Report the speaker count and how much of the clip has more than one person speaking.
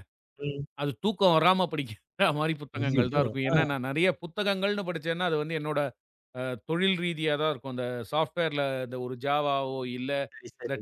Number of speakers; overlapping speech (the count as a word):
two, about 9%